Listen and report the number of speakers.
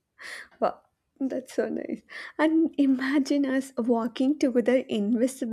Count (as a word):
one